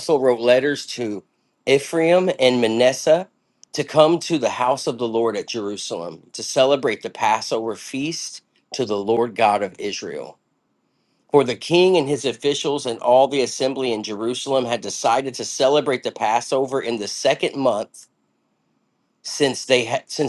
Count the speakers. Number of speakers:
1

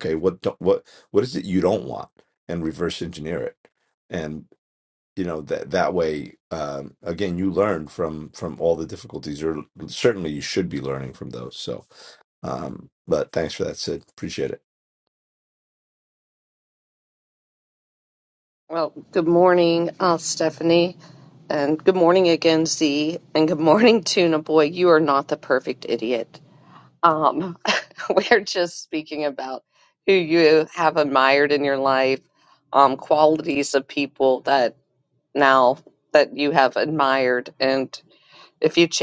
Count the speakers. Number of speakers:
2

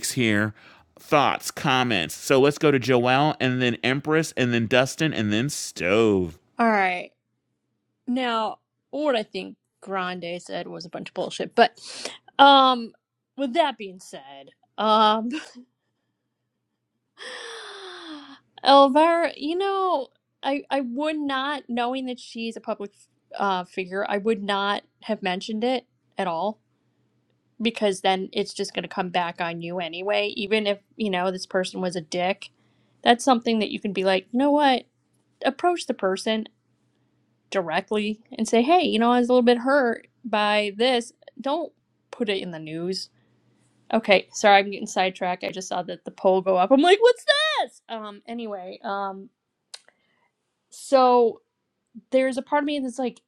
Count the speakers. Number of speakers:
2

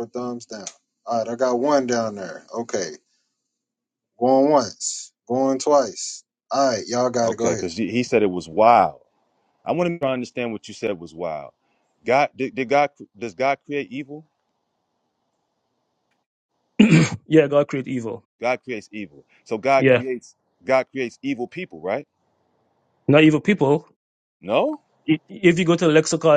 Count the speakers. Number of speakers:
3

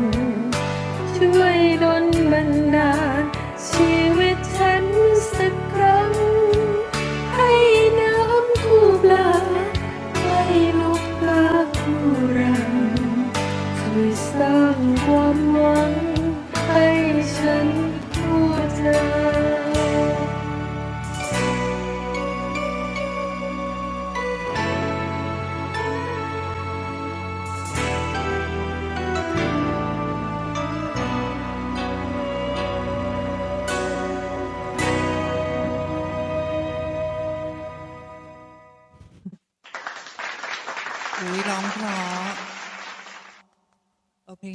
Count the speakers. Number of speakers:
2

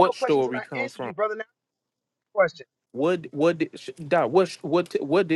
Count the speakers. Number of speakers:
2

